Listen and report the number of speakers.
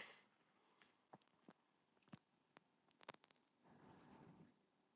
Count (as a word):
zero